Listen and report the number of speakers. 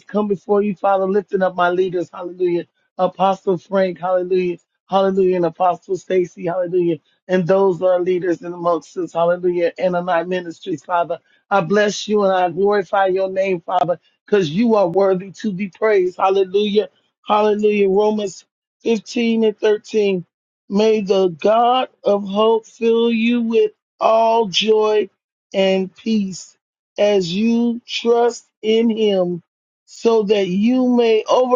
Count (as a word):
one